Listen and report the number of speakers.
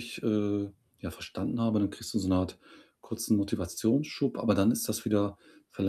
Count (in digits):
1